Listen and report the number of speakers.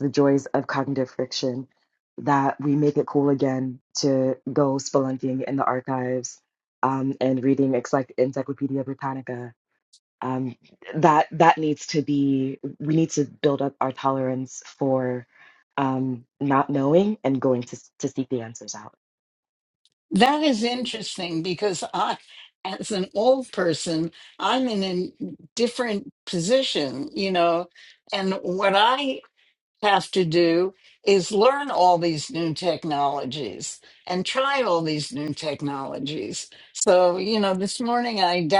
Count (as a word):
two